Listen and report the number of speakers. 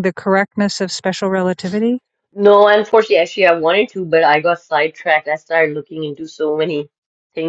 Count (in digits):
2